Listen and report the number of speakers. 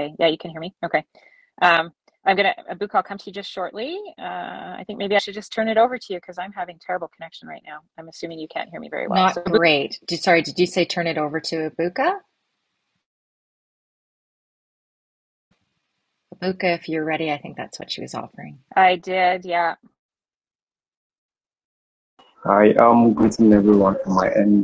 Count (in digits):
3